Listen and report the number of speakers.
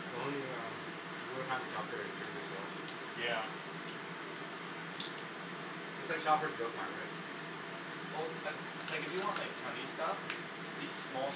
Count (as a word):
two